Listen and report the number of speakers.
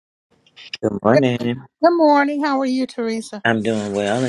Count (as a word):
two